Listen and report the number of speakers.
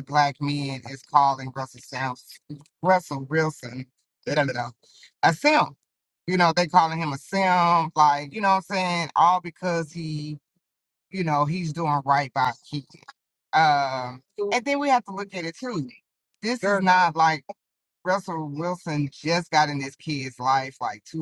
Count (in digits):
1